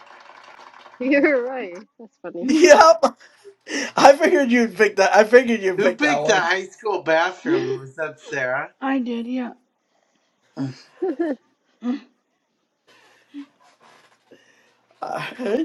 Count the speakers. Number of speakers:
4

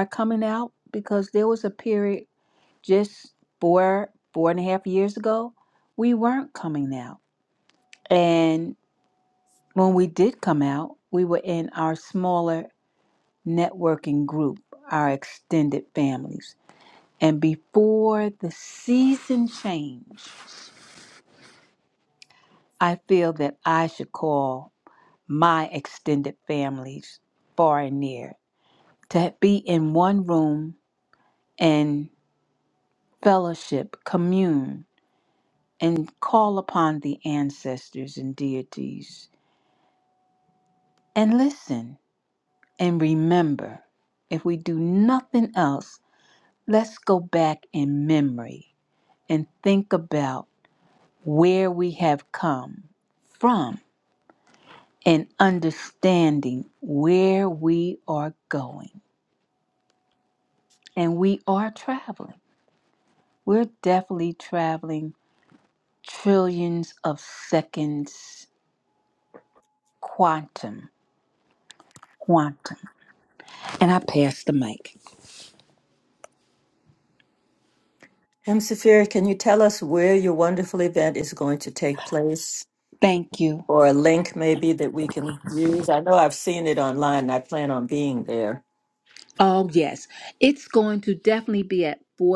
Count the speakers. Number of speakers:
2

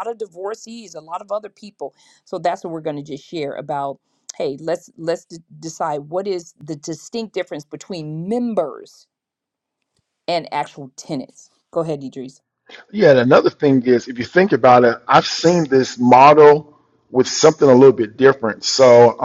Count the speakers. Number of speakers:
2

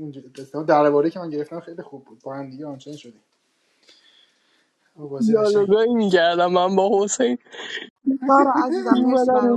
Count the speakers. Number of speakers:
3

